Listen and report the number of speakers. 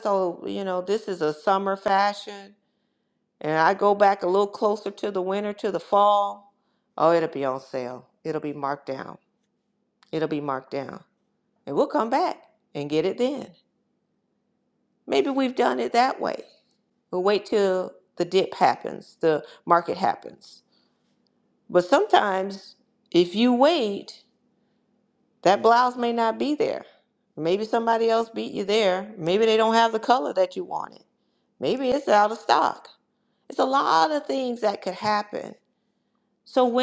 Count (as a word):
one